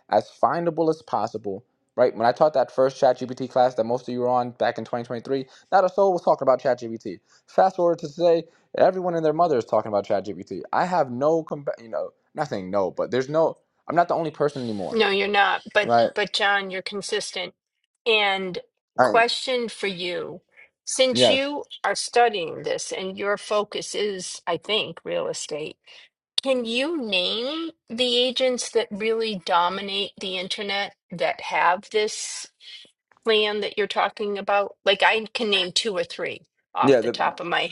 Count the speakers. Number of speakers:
2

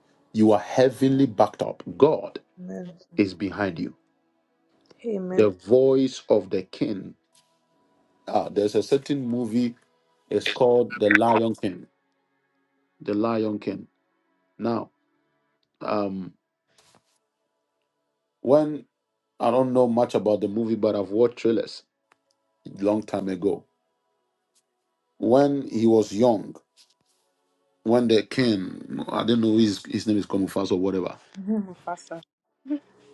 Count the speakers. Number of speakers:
2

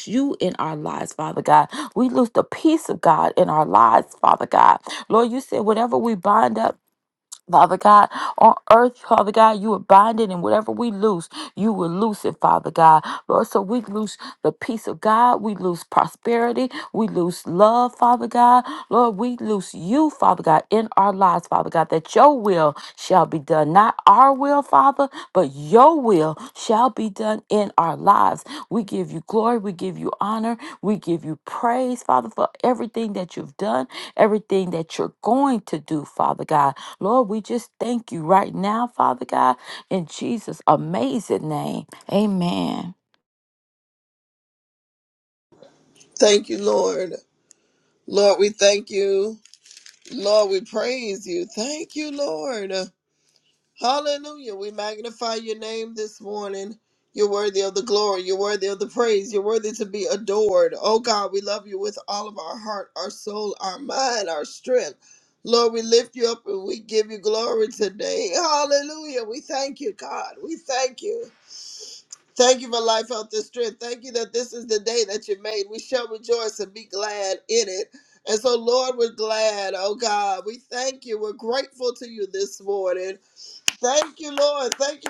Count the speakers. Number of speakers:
2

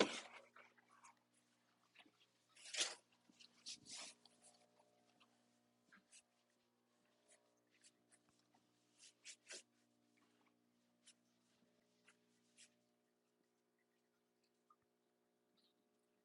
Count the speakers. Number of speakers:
0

